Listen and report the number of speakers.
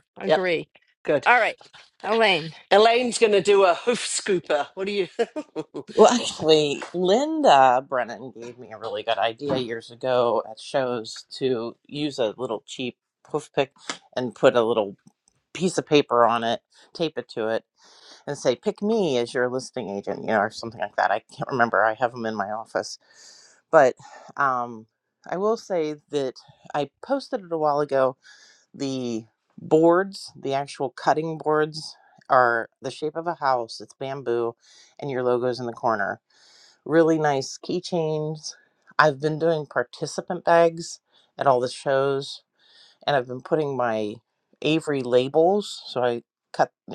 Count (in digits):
3